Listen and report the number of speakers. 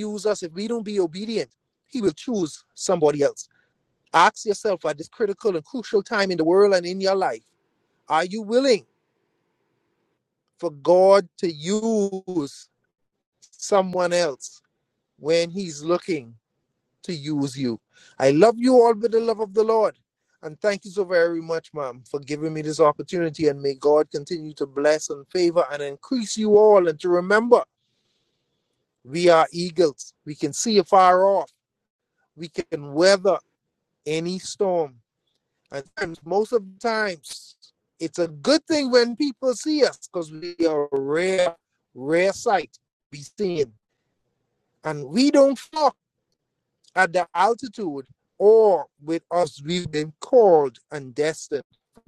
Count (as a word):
one